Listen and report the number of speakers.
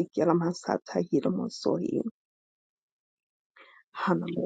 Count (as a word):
one